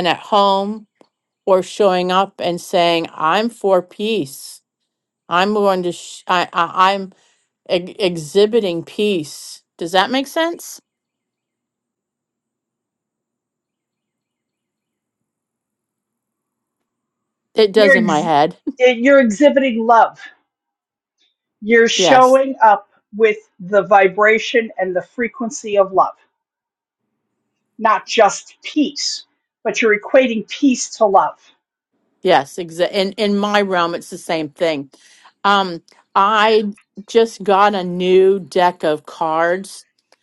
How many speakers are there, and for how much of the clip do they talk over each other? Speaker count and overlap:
2, about 2%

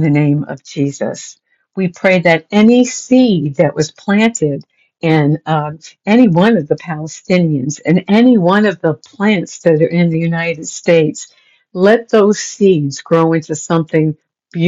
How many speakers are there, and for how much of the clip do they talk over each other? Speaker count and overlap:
1, no overlap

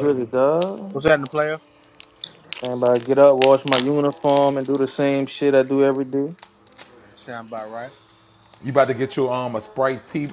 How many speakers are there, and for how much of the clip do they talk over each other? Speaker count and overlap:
3, about 1%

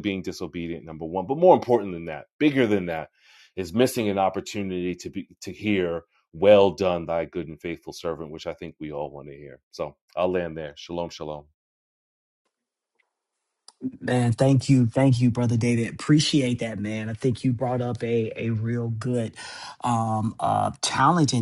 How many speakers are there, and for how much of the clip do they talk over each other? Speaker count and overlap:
2, no overlap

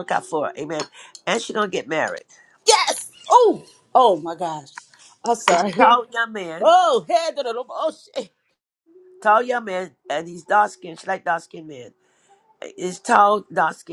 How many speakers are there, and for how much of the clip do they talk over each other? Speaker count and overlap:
2, about 4%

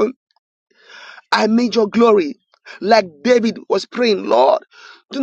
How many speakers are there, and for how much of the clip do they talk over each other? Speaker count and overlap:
1, no overlap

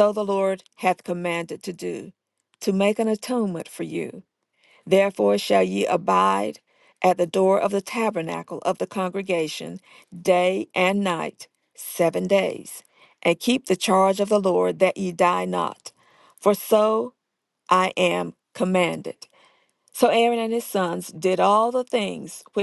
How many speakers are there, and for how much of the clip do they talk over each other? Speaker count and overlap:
1, no overlap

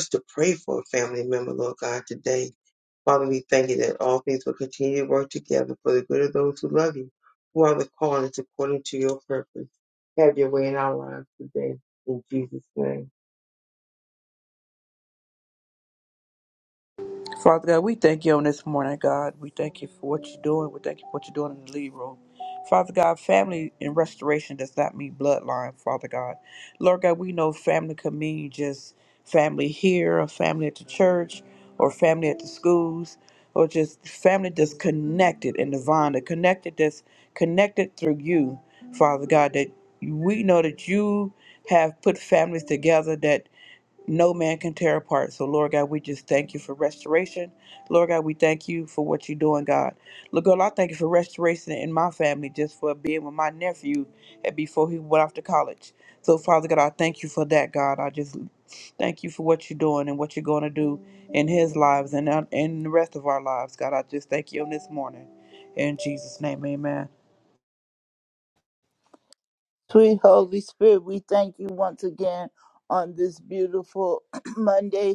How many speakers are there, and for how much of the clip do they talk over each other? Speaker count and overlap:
3, no overlap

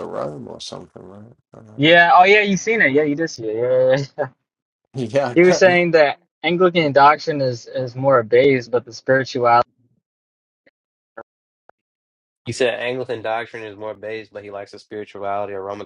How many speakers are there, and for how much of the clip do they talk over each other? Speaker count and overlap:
3, about 3%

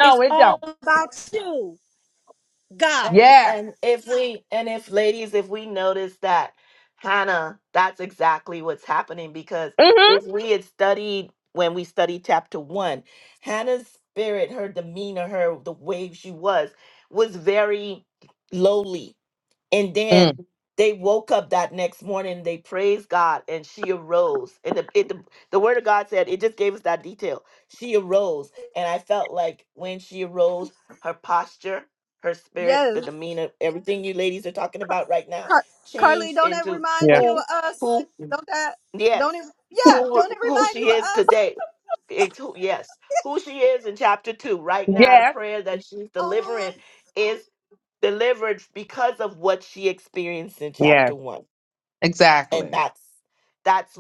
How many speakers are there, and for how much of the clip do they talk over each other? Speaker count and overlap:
3, about 11%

